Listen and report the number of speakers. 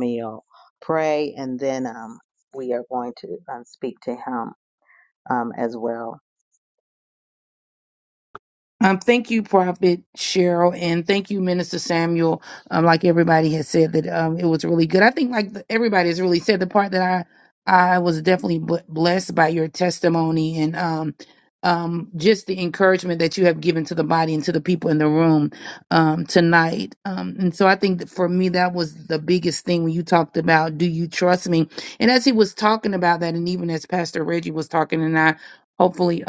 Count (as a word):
two